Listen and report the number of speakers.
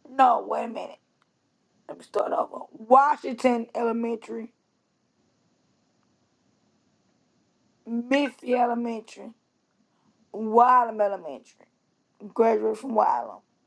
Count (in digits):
1